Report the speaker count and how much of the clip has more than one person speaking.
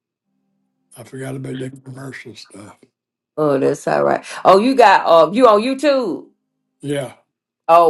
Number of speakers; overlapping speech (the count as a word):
two, no overlap